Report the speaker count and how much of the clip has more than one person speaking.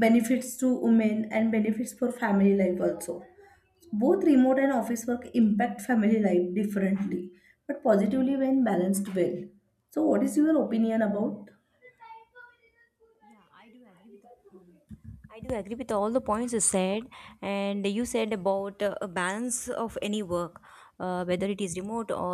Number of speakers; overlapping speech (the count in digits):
2, no overlap